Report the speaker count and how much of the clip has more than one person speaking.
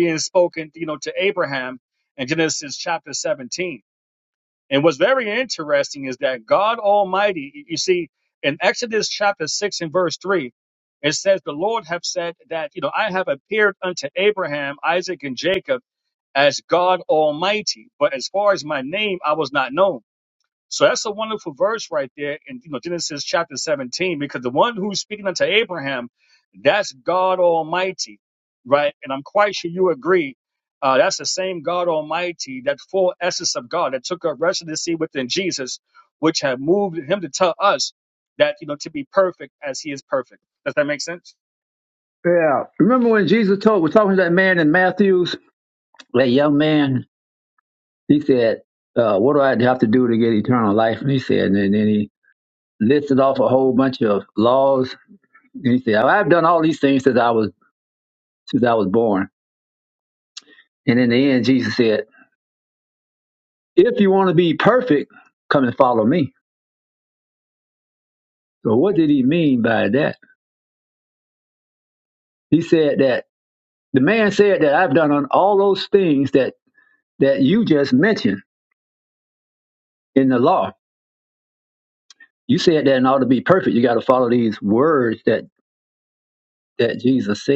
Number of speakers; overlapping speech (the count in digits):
2, no overlap